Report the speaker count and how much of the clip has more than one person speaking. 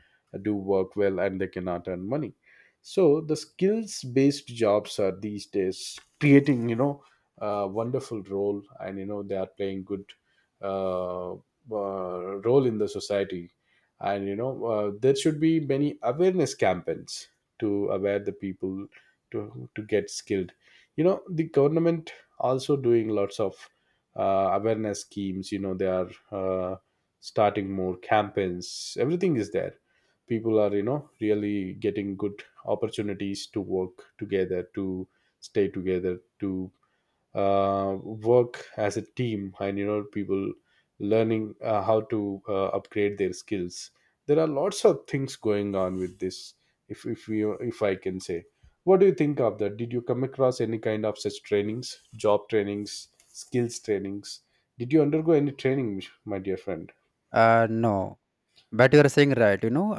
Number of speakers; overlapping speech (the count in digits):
2, no overlap